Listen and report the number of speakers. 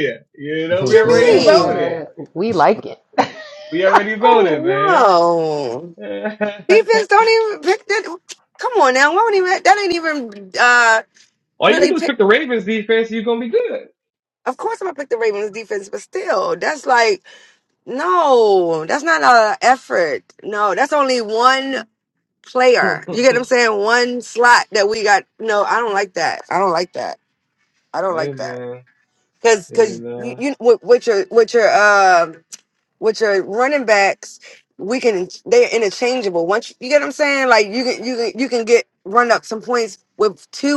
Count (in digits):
3